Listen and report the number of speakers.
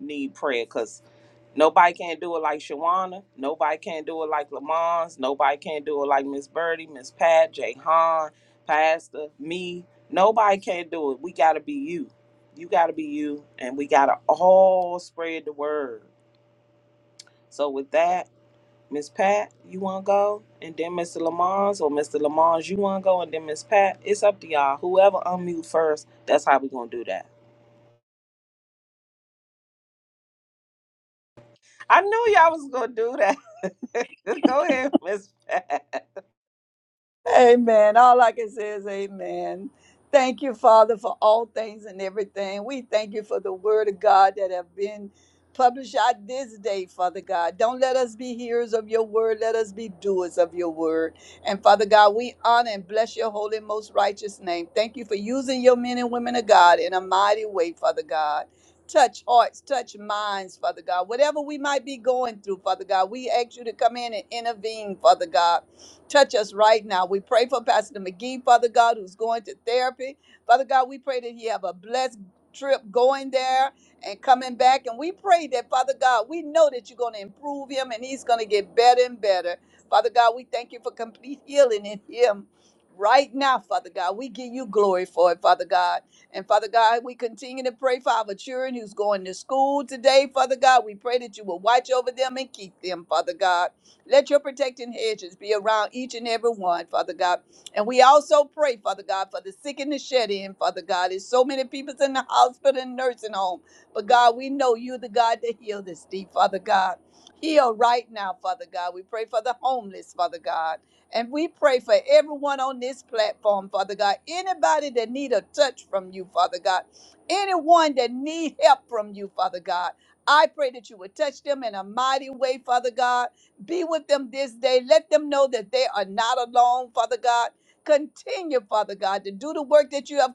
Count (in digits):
2